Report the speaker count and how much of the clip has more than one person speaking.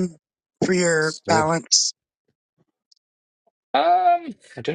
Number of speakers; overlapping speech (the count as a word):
two, about 5%